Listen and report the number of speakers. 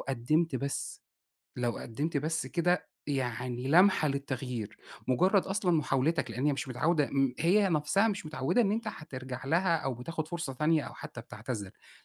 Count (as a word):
one